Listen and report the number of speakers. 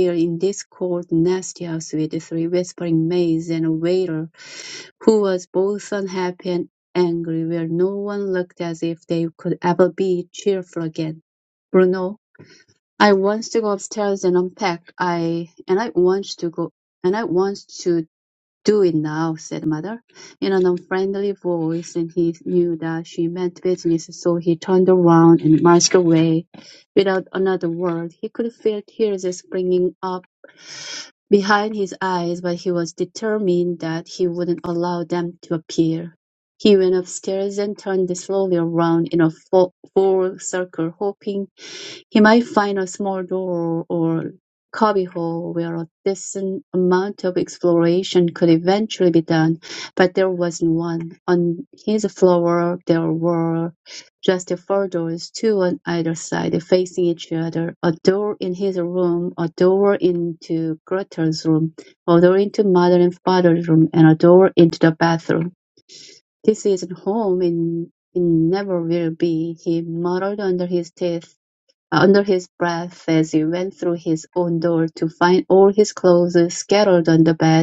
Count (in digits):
1